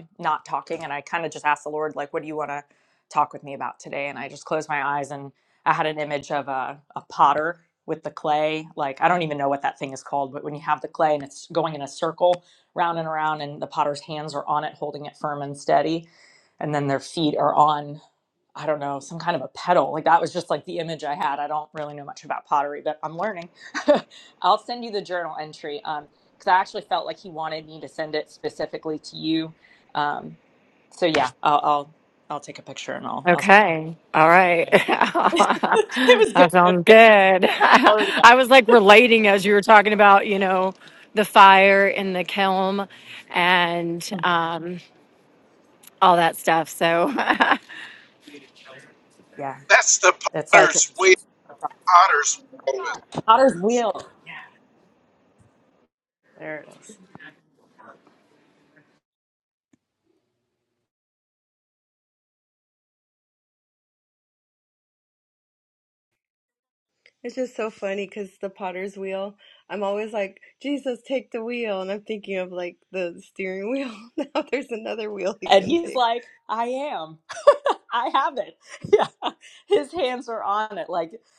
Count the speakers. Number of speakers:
four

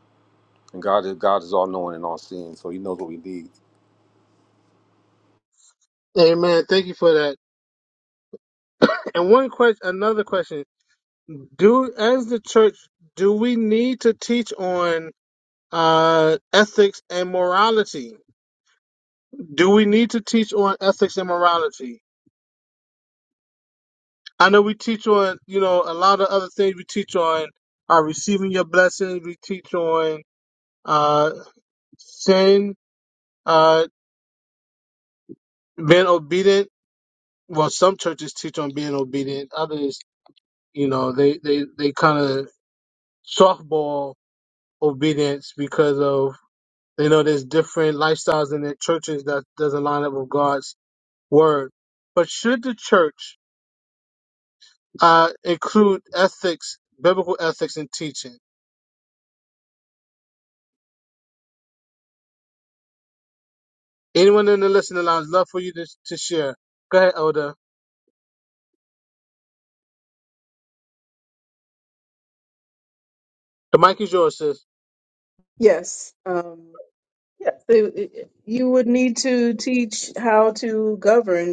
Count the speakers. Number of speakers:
three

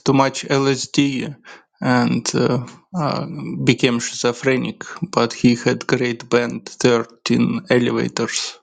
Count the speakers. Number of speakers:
one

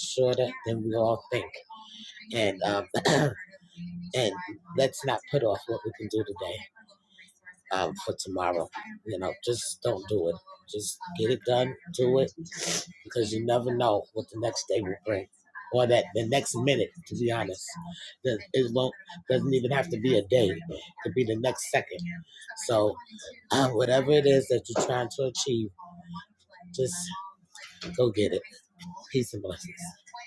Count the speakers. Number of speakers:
one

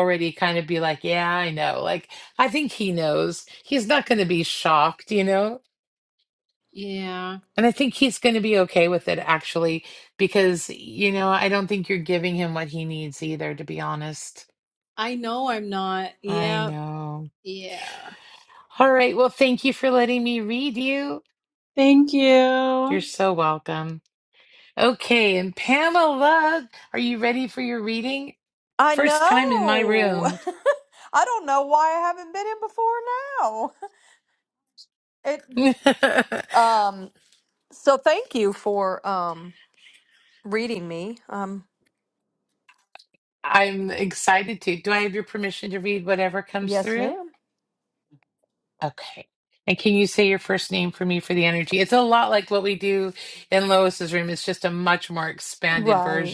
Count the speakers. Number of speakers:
three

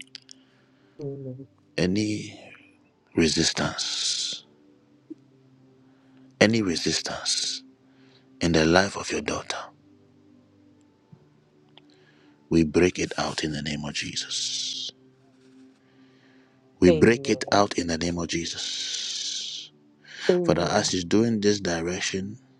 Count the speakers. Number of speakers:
two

